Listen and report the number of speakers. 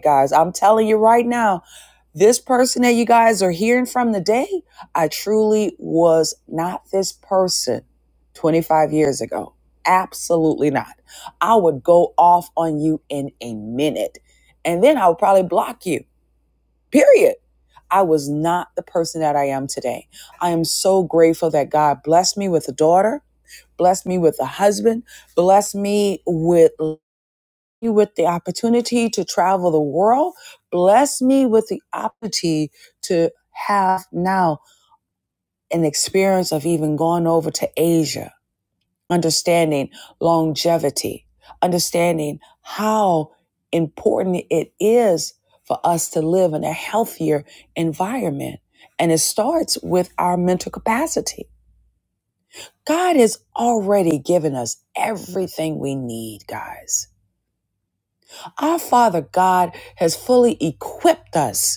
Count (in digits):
1